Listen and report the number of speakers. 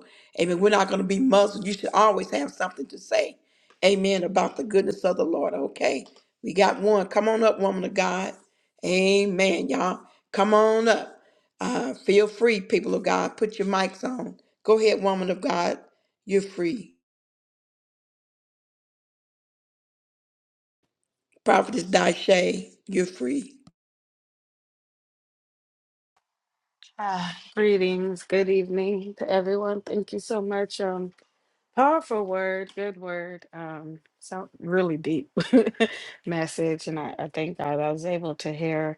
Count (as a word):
two